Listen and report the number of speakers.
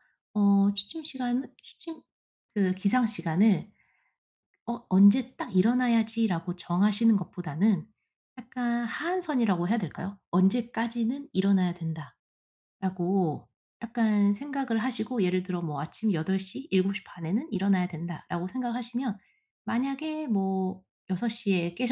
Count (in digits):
1